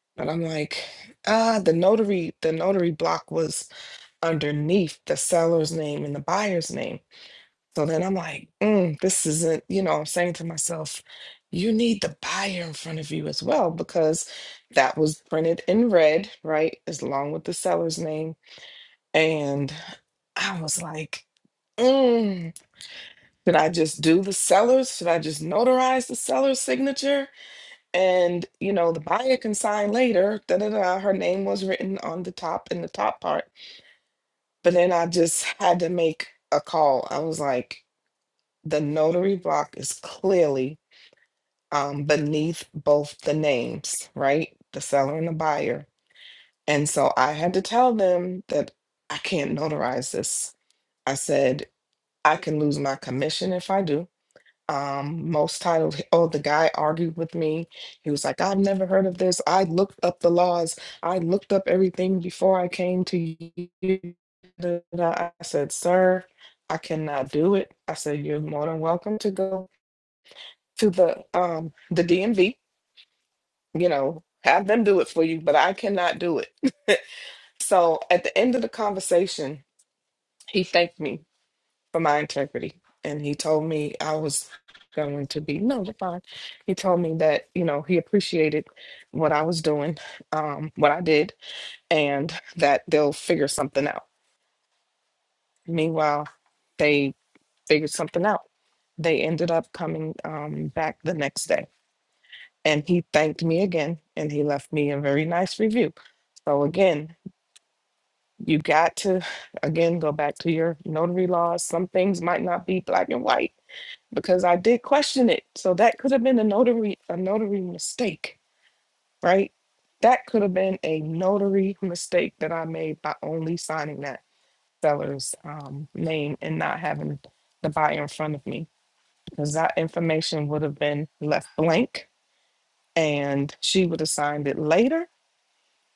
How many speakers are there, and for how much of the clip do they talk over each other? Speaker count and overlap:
1, no overlap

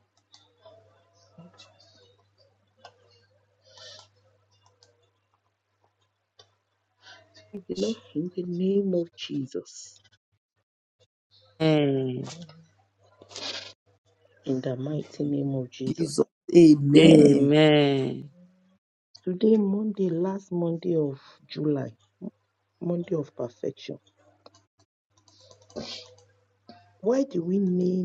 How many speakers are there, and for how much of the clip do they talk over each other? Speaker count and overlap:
3, about 3%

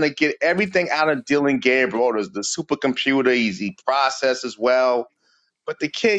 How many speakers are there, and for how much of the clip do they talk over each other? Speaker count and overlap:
1, no overlap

